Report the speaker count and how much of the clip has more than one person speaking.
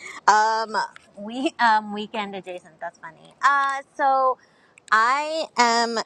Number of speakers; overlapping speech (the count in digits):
1, no overlap